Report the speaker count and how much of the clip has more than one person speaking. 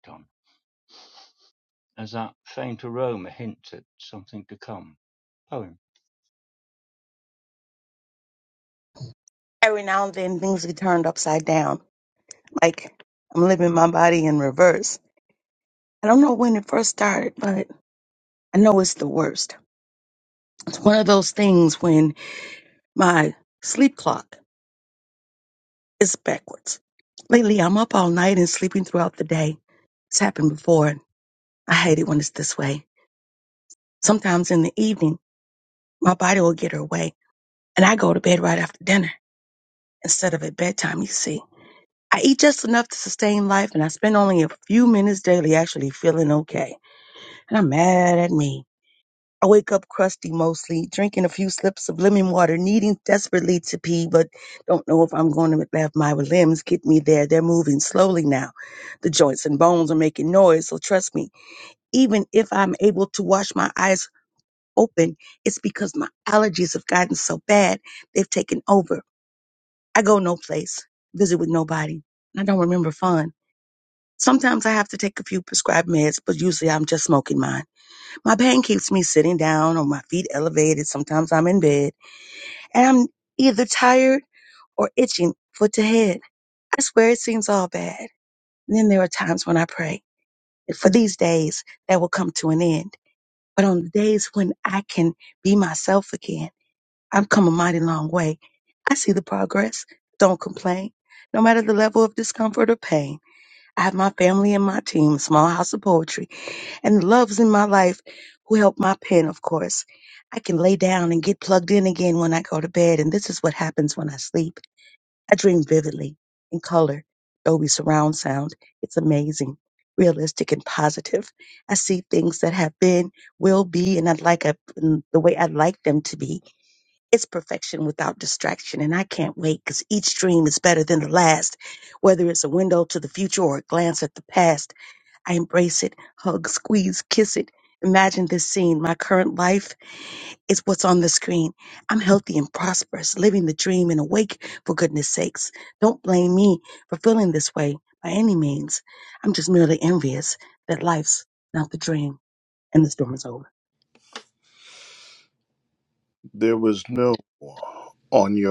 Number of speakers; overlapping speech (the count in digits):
3, no overlap